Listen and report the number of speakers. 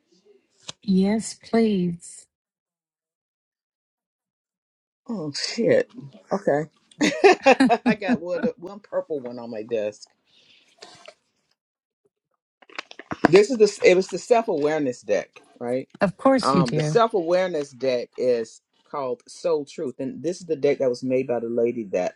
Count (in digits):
2